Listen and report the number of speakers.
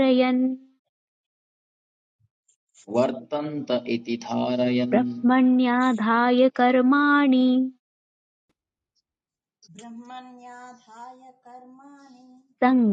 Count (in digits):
3